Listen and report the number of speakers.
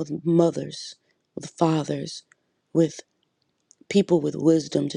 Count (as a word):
one